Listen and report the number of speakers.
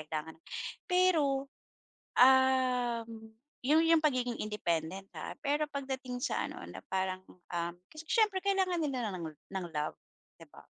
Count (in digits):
1